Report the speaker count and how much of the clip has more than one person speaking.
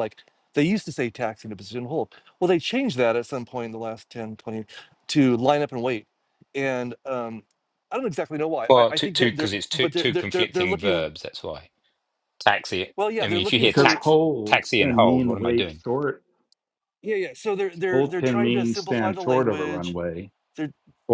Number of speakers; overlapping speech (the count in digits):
3, about 32%